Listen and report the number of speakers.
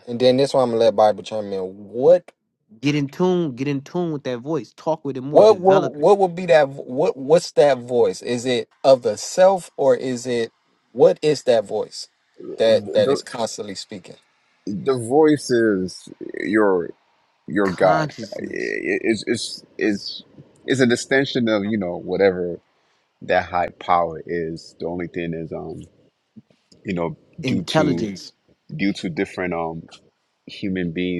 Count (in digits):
3